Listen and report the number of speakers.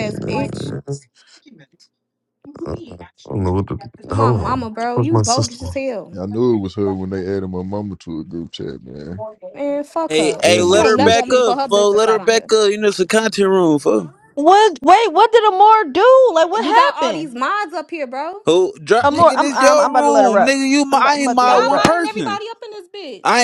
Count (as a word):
five